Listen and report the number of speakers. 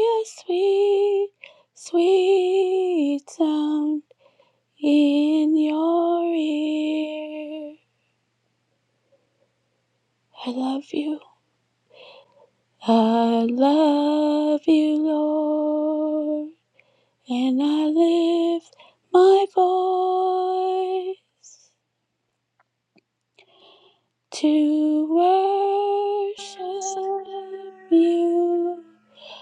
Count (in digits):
1